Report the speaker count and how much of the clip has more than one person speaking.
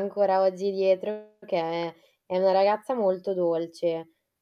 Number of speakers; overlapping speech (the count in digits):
1, no overlap